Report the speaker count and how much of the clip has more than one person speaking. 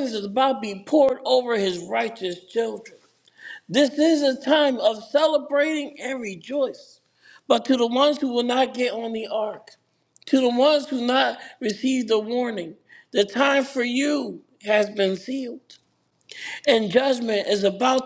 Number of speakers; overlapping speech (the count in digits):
1, no overlap